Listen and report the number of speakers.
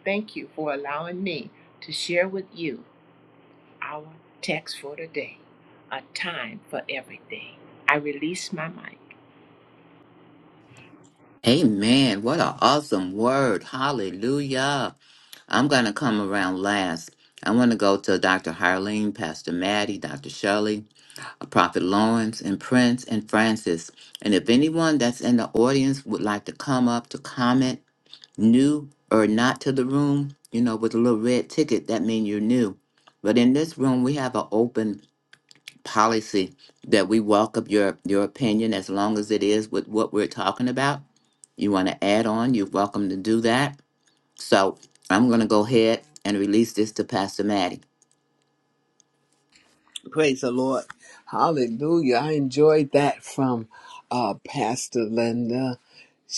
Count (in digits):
3